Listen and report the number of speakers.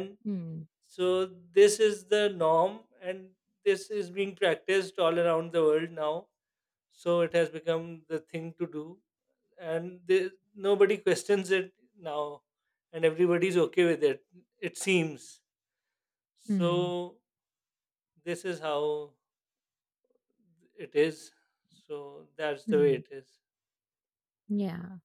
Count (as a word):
two